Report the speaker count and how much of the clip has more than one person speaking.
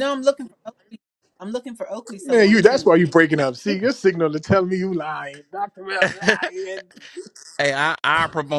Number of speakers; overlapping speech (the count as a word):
three, about 11%